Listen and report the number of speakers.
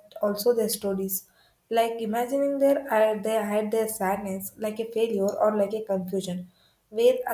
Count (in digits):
1